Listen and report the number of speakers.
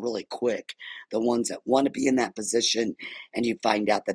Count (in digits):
1